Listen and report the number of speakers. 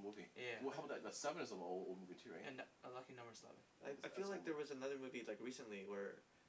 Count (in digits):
3